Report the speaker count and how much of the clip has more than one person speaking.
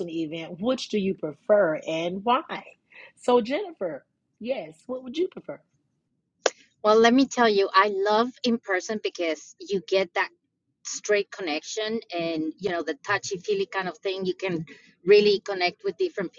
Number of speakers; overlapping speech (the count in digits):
2, no overlap